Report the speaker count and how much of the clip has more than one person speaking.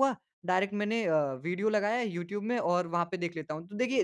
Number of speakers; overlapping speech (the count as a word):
one, no overlap